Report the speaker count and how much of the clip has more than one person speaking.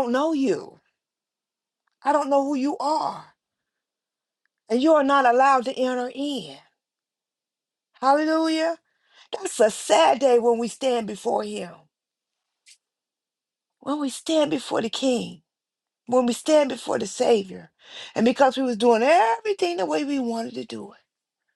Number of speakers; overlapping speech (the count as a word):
one, no overlap